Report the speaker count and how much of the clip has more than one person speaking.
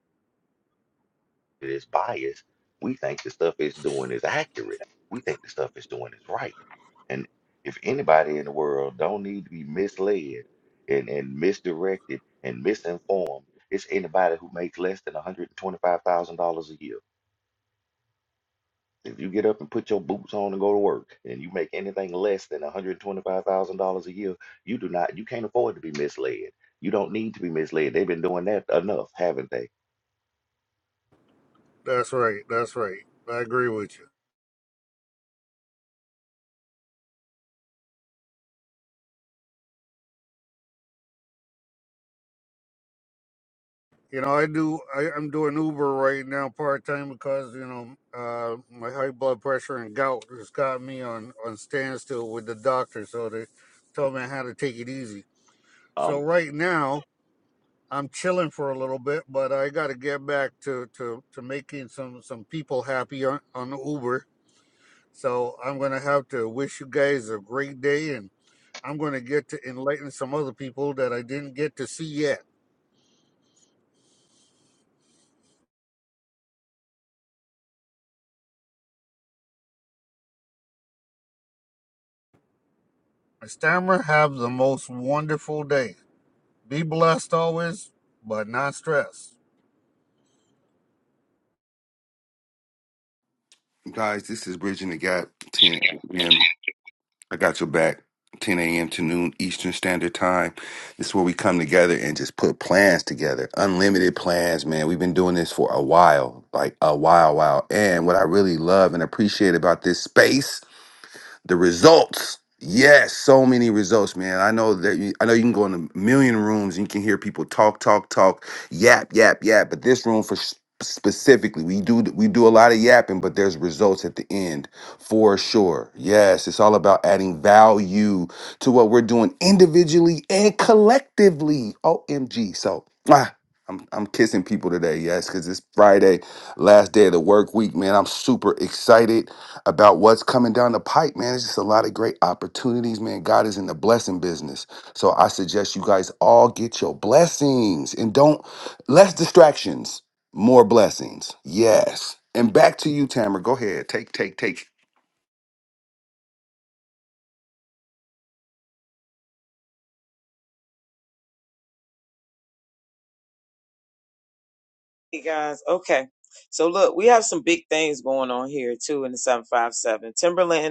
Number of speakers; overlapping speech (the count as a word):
four, under 1%